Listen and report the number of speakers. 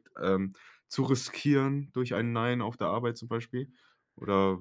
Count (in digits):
1